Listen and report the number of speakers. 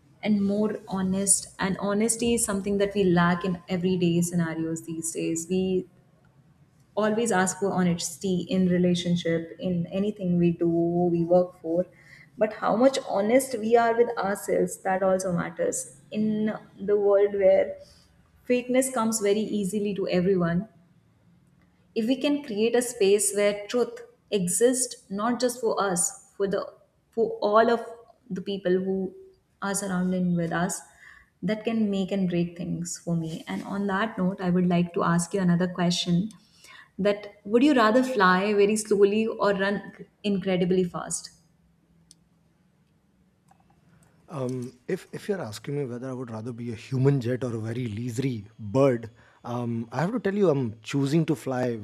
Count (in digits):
2